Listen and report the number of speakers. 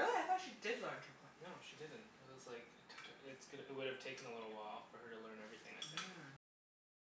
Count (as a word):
two